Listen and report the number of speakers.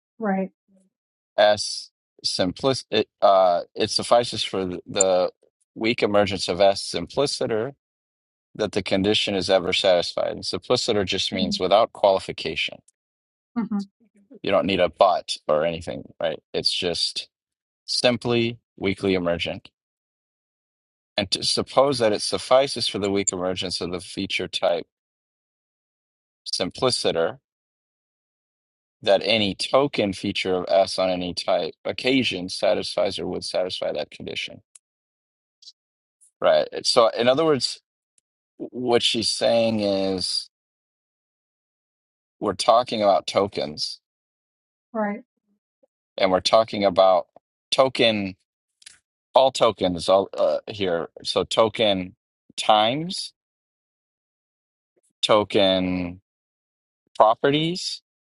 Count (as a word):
two